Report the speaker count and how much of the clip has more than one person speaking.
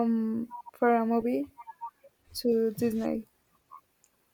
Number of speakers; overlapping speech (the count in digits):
1, no overlap